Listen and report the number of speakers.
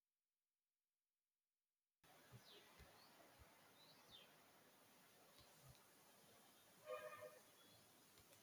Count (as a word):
zero